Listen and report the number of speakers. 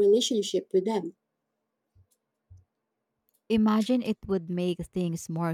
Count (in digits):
2